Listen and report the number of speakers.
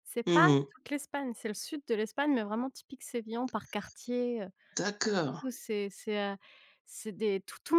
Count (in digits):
2